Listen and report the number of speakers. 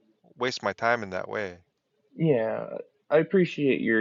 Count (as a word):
two